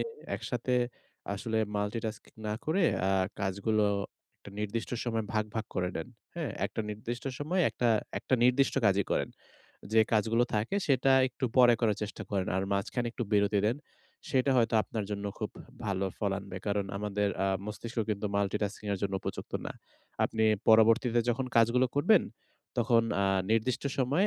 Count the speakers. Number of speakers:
1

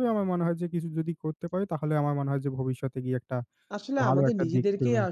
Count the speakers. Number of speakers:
2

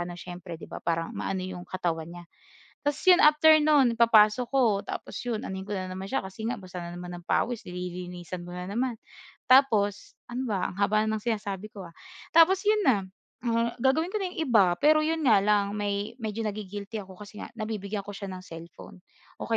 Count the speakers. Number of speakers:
1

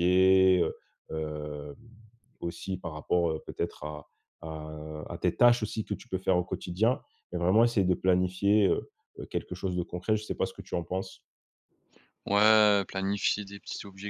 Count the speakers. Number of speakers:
2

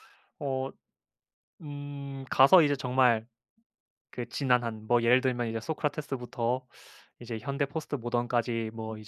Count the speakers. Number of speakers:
1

